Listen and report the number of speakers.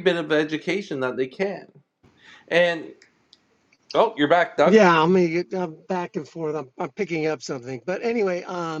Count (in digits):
2